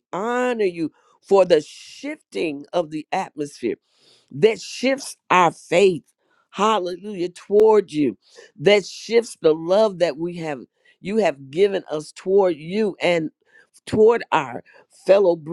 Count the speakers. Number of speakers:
1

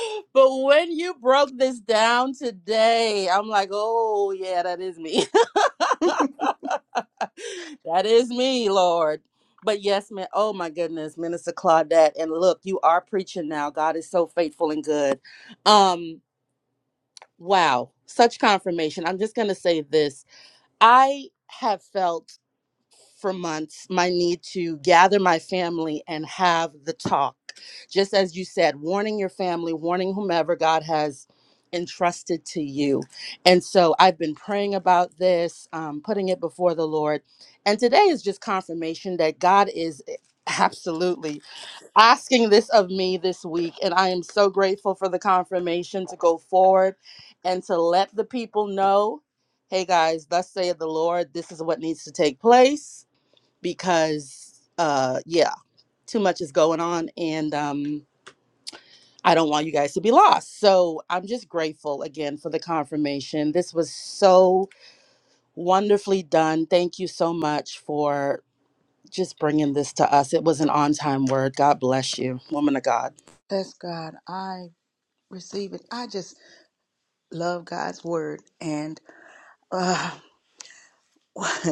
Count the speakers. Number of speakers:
2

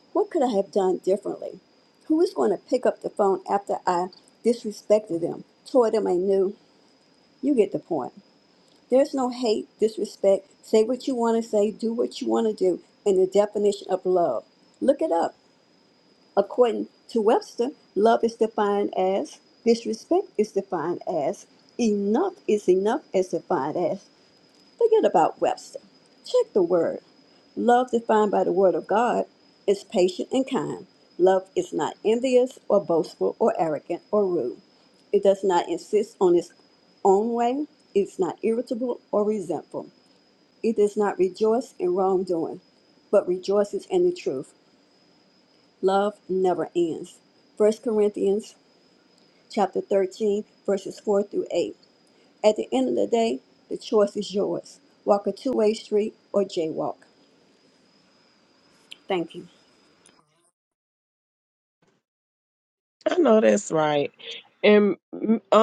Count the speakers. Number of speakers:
2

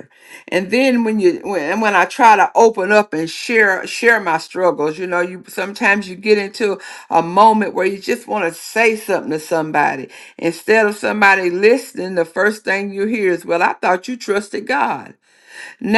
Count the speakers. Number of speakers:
1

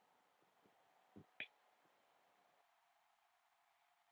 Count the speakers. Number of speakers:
0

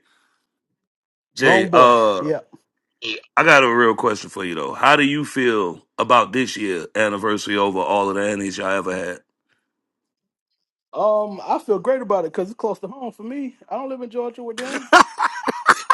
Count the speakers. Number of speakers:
2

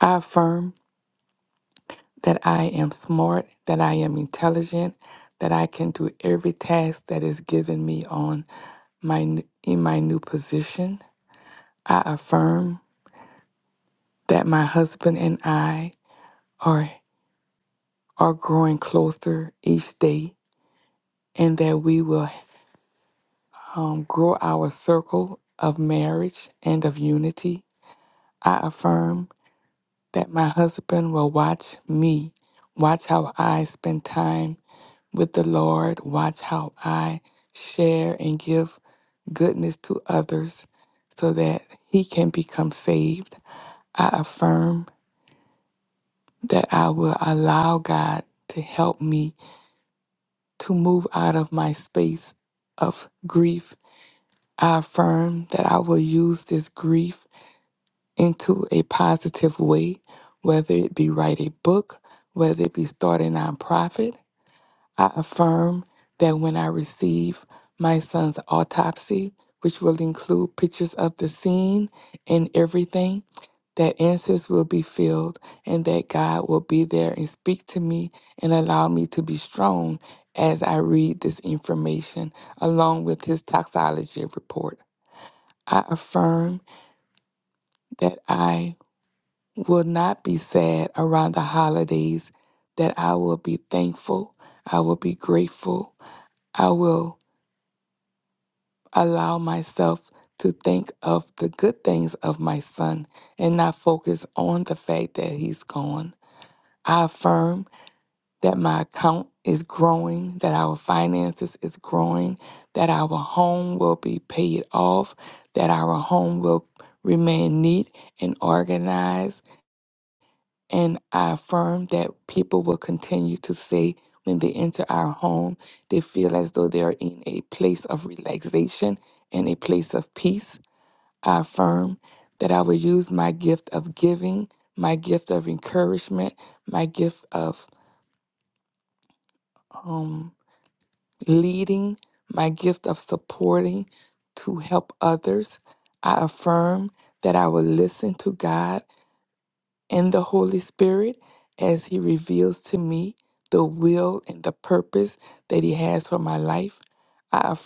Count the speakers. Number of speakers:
1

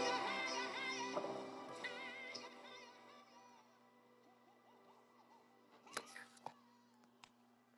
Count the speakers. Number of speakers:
0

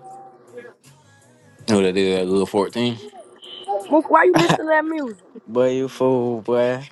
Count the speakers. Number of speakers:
3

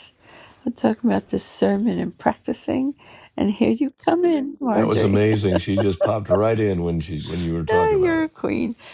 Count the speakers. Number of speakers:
2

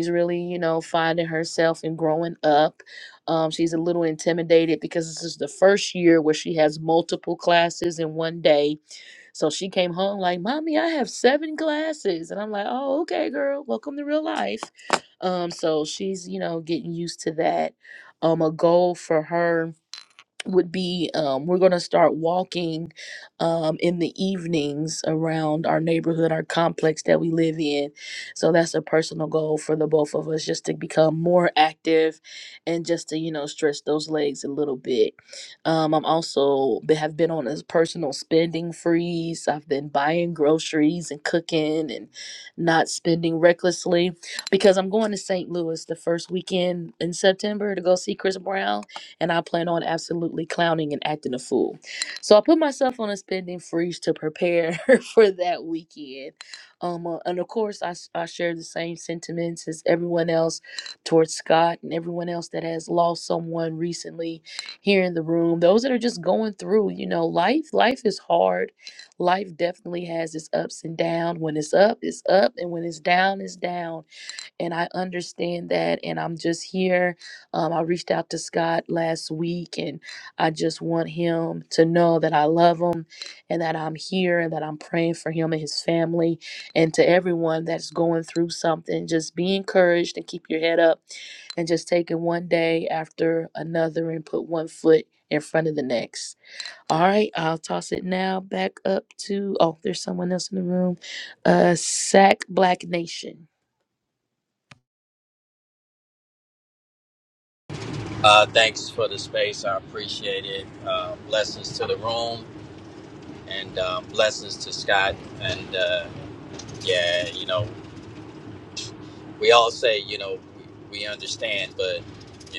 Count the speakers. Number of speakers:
2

